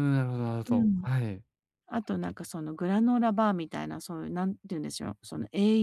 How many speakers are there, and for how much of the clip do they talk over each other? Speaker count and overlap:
2, about 7%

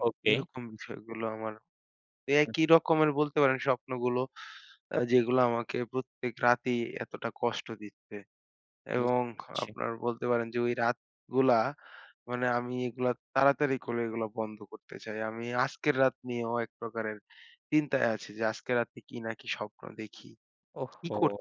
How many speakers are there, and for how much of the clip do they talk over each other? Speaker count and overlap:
2, about 5%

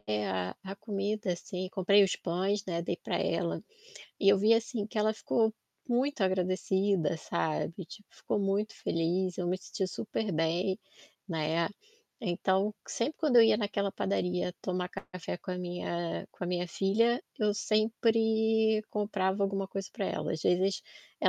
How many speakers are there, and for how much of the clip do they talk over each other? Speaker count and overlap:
1, no overlap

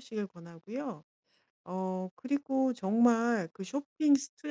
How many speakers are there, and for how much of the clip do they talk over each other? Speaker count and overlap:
1, no overlap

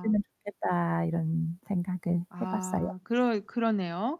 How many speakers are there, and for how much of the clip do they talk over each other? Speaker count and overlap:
2, about 19%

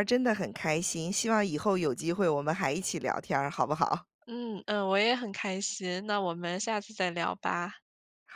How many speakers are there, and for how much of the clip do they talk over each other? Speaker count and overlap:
2, no overlap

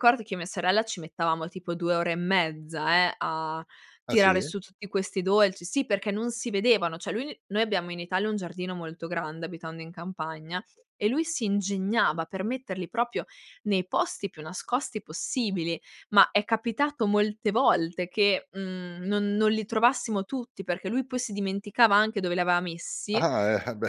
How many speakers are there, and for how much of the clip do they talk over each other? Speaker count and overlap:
2, about 2%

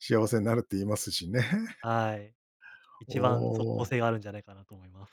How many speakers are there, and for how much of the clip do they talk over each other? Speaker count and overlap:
2, about 4%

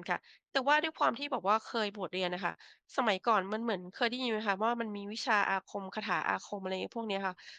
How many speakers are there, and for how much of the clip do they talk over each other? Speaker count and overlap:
1, no overlap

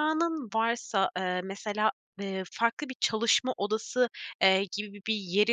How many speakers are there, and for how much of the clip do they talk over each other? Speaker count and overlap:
1, no overlap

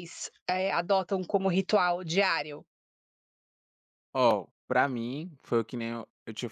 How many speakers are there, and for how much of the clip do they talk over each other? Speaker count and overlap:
2, no overlap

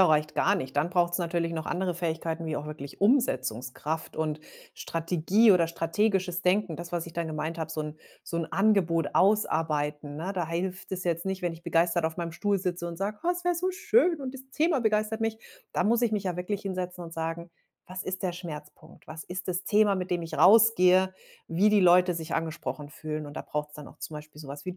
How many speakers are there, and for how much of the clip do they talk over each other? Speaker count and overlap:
1, no overlap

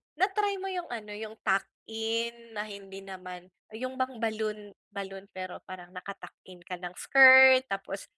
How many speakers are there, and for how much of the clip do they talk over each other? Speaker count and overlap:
1, no overlap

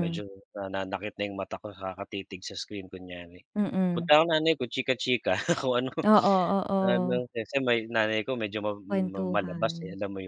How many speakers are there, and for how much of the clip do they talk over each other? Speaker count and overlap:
2, about 17%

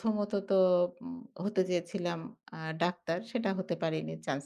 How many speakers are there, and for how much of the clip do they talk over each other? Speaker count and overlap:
1, no overlap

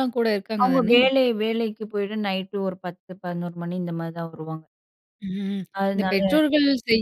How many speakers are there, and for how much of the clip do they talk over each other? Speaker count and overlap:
2, about 11%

